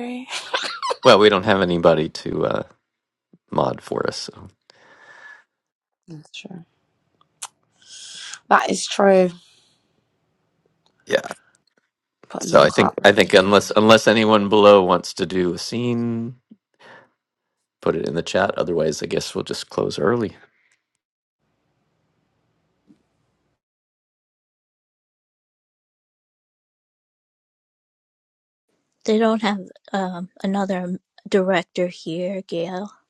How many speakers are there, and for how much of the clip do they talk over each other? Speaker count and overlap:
3, about 2%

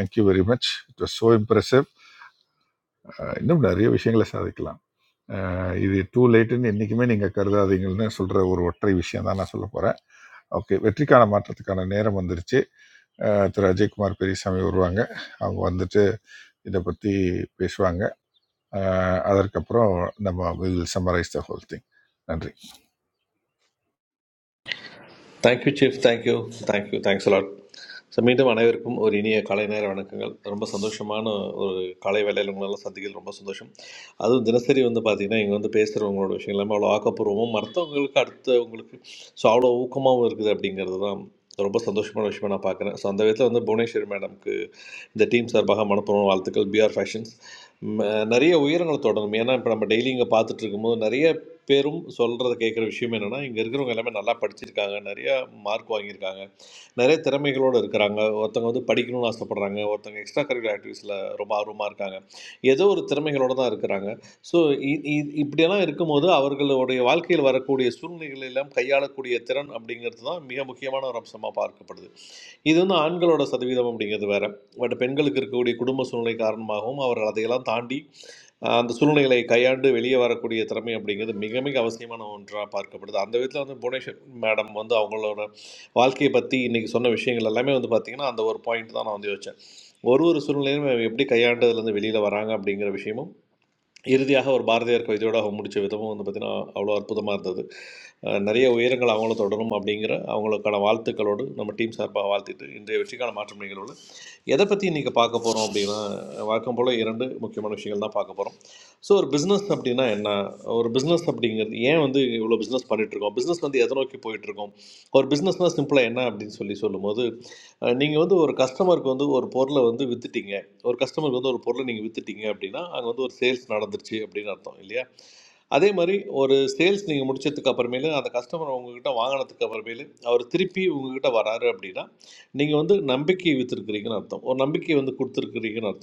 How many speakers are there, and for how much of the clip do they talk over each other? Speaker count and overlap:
2, no overlap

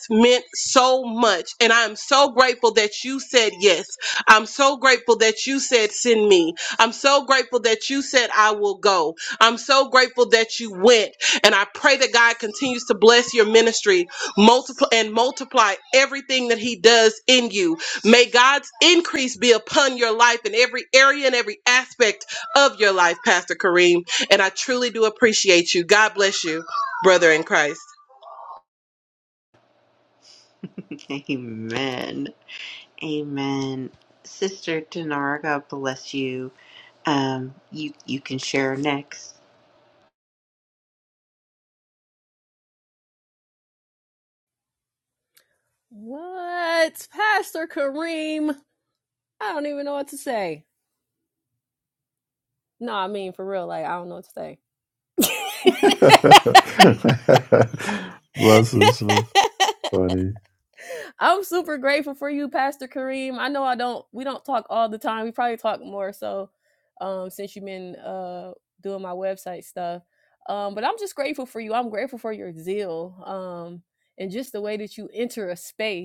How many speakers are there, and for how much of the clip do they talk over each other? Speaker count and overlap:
4, no overlap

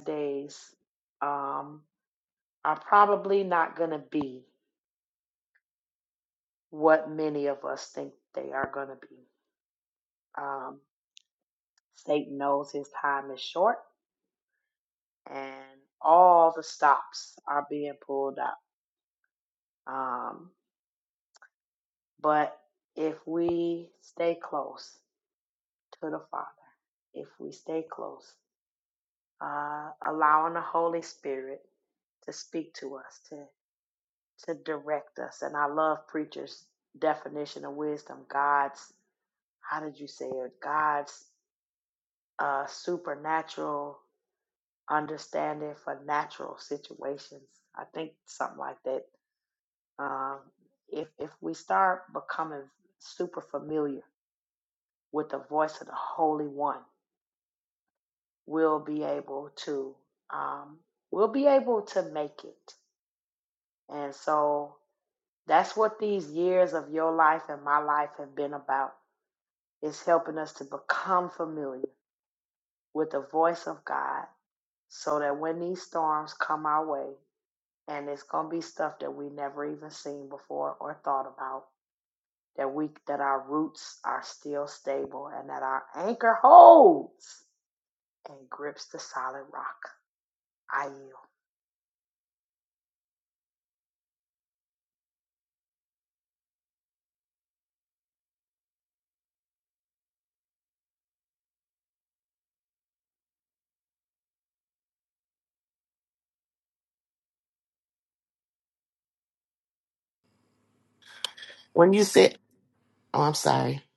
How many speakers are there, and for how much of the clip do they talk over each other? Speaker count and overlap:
2, no overlap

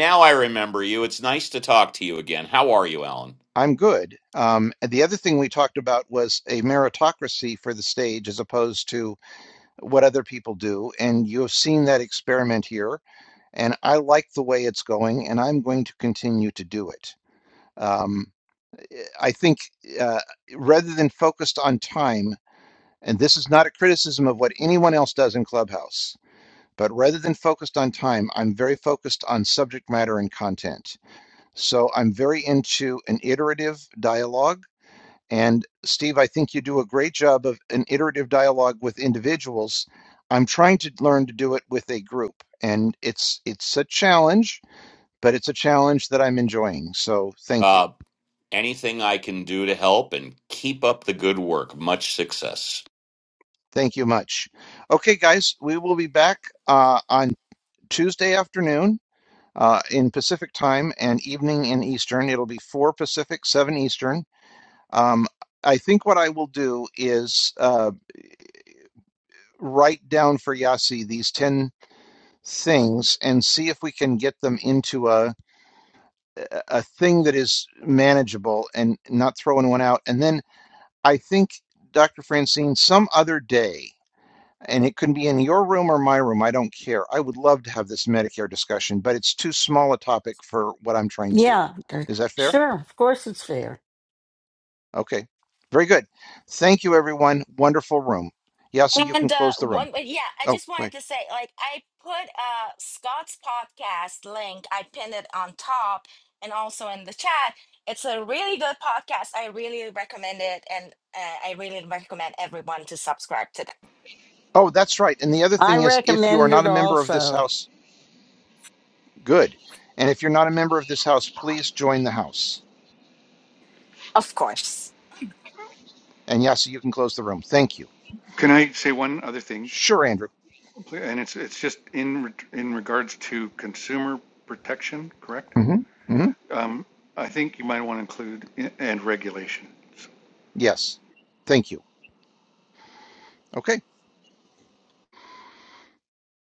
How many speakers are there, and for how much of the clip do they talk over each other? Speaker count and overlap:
5, about 3%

